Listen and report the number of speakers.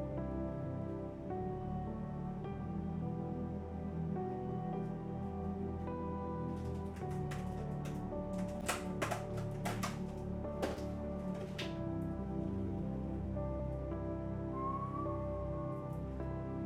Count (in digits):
0